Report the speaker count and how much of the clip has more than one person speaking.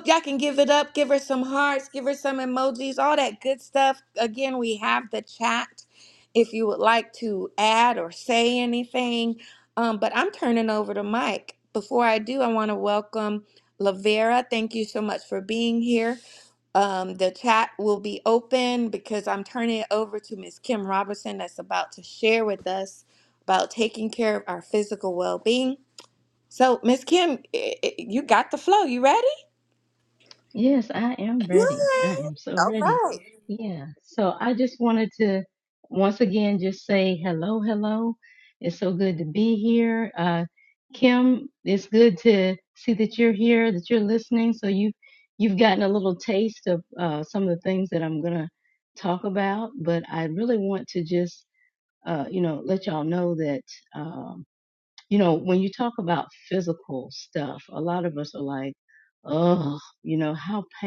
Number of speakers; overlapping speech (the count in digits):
2, about 1%